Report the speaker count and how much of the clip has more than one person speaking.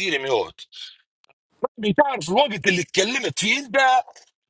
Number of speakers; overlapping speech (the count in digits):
1, no overlap